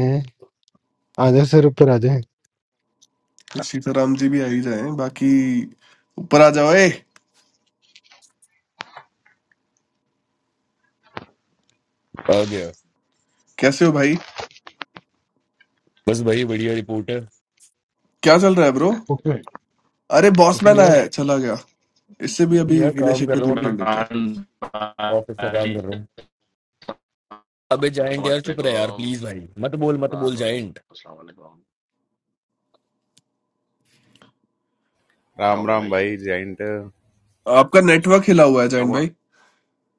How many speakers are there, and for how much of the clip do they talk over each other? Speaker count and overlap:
five, about 12%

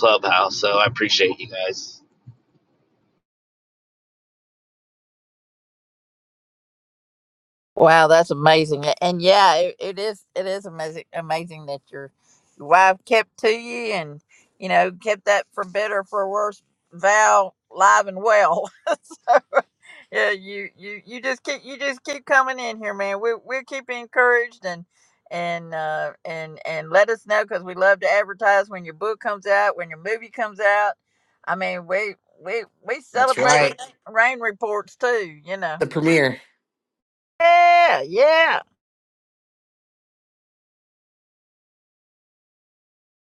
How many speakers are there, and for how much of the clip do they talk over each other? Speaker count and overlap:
three, about 1%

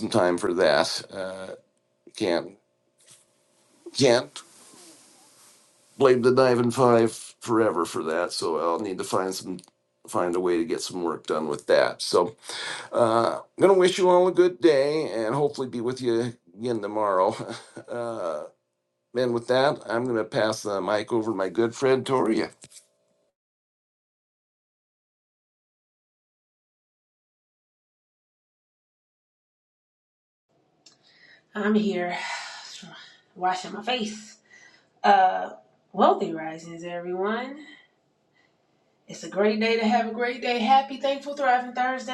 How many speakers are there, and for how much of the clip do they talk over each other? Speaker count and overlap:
two, no overlap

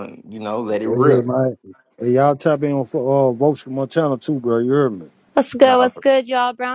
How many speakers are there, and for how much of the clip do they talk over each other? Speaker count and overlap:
three, about 12%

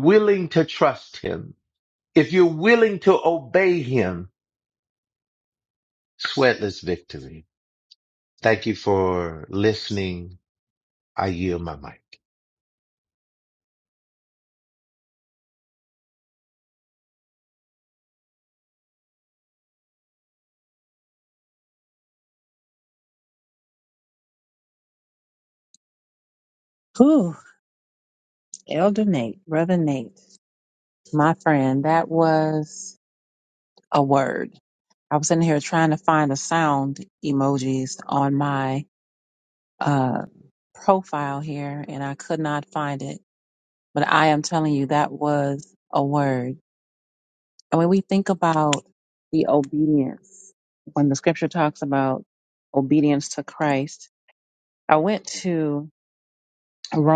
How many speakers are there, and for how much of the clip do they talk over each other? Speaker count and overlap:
two, no overlap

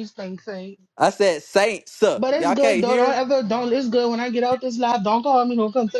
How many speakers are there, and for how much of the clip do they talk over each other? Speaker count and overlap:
two, about 16%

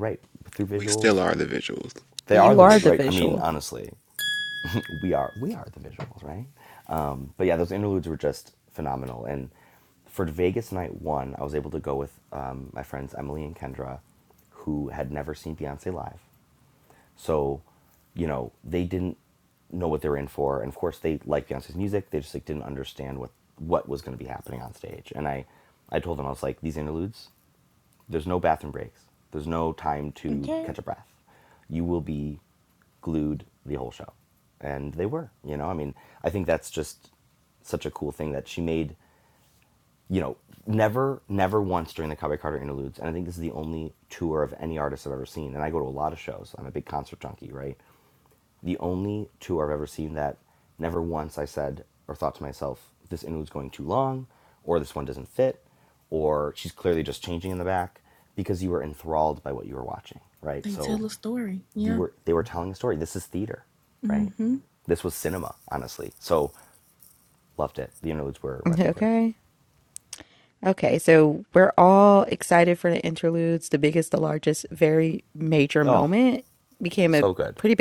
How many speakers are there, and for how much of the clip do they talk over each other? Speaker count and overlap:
four, about 5%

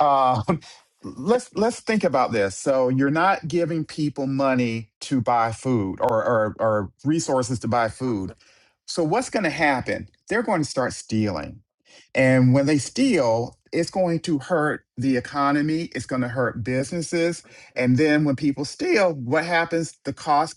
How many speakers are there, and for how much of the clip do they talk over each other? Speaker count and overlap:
one, no overlap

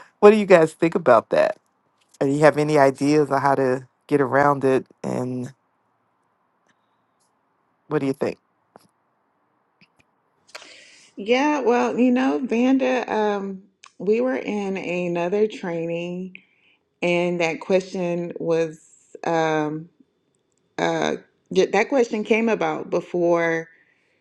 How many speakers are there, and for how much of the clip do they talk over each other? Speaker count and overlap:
two, no overlap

